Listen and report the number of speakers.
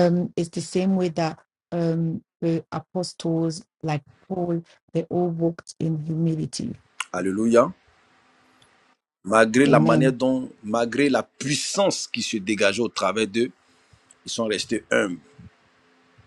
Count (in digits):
2